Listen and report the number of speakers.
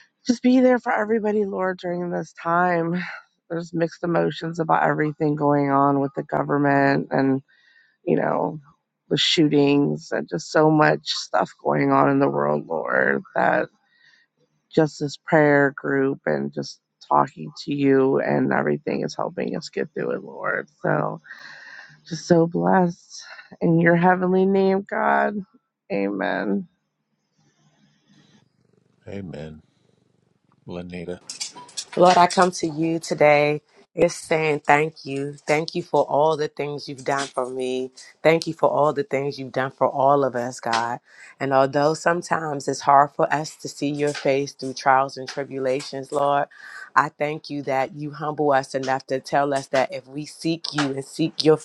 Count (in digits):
3